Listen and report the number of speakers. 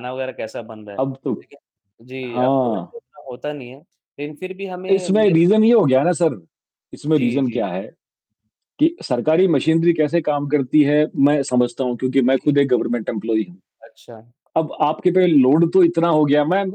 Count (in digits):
2